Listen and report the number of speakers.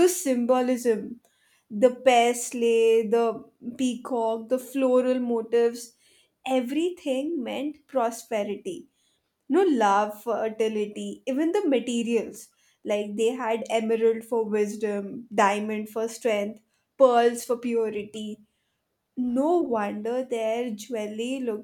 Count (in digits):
1